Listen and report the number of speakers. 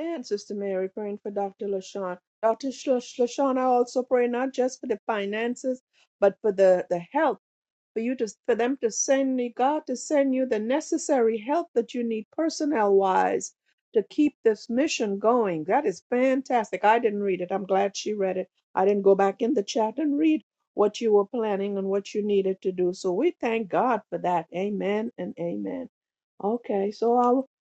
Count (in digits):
1